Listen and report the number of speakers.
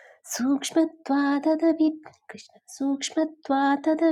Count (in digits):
1